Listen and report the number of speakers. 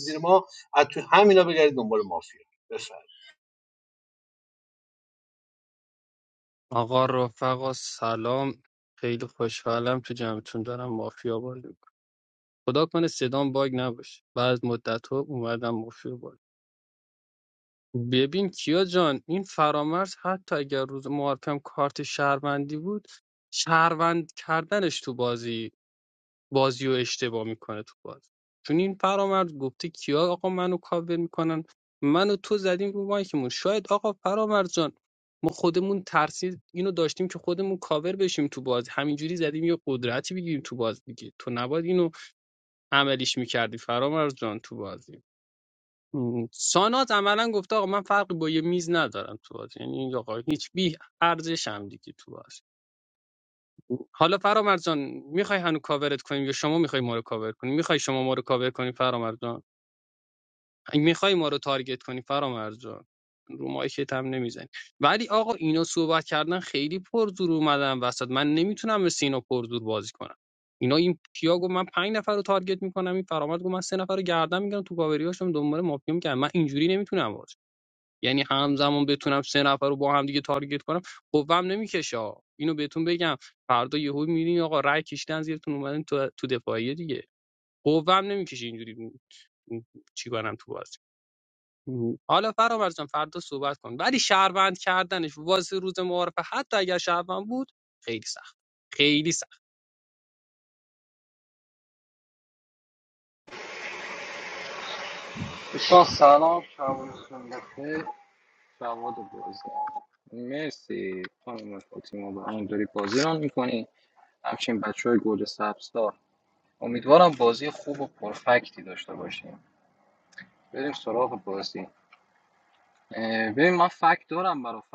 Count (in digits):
3